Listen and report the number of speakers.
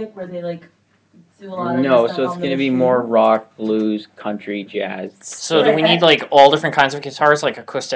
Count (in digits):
3